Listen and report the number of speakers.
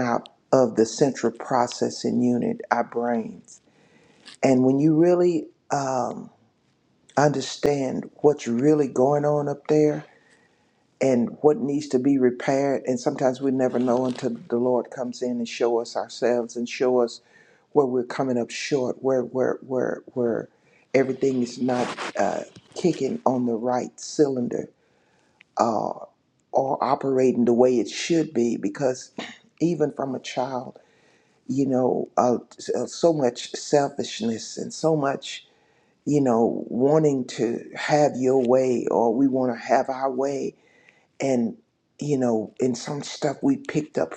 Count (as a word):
one